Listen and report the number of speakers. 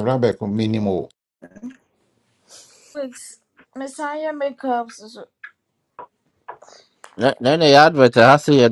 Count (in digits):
3